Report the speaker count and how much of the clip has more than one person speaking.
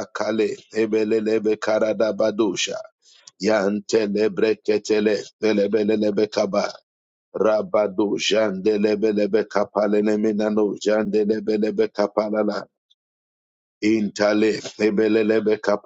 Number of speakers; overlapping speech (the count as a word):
one, no overlap